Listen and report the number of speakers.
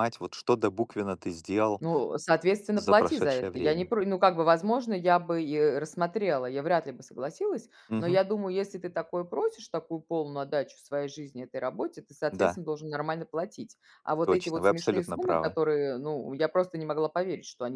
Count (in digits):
2